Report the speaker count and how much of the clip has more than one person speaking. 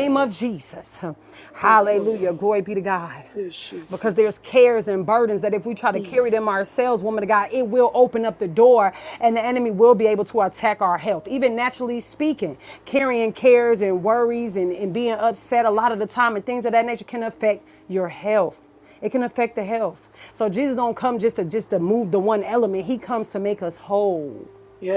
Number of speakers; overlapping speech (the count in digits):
2, about 5%